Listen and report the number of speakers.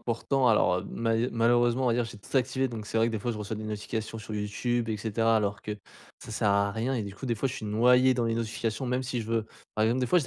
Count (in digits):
1